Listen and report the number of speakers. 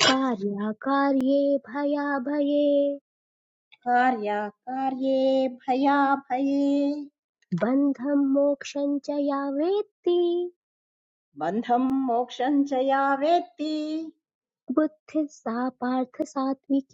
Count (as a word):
two